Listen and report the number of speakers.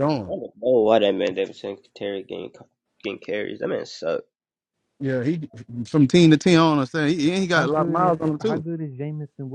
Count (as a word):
three